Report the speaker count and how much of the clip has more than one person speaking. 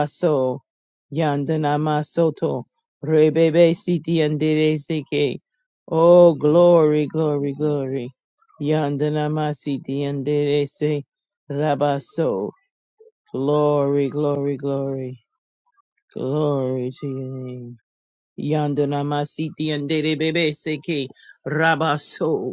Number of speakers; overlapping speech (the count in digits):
1, no overlap